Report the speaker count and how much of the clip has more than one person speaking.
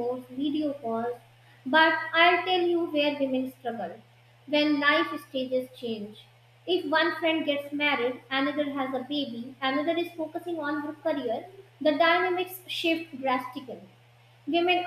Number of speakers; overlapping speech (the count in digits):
1, no overlap